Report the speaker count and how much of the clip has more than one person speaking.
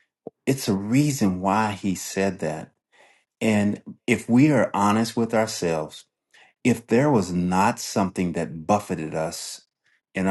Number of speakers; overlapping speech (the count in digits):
1, no overlap